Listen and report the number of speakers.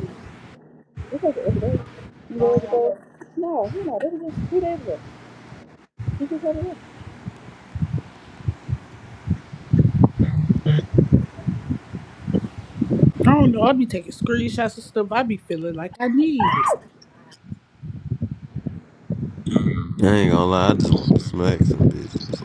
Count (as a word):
three